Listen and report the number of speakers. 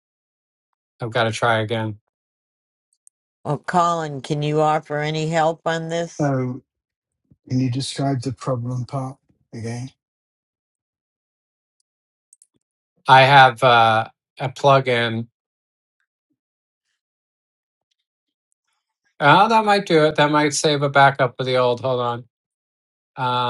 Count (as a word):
three